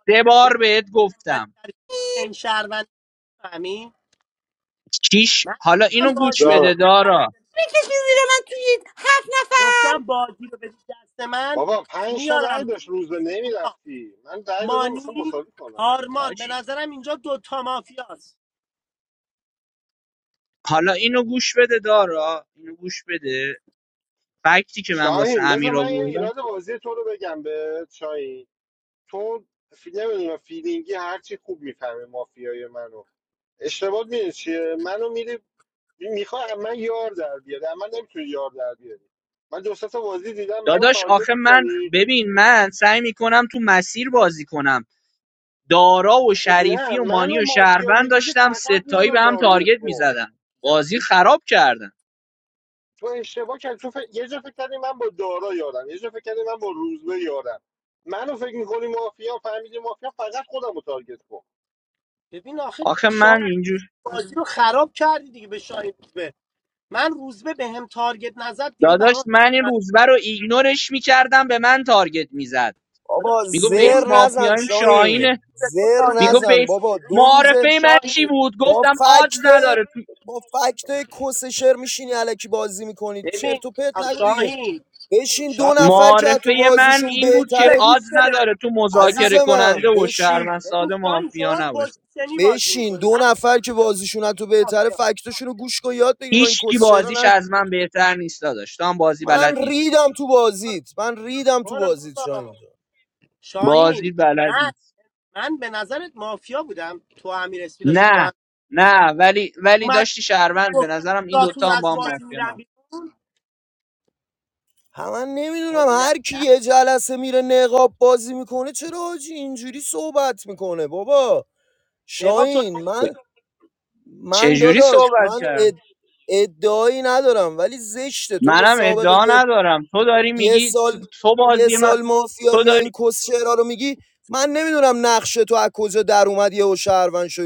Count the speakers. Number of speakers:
5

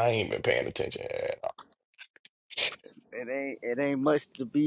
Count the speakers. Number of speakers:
2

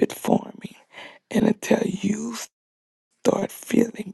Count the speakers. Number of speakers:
1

